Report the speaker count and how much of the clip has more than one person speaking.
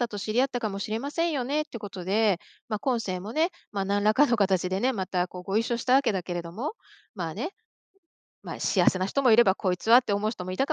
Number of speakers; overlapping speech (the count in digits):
1, no overlap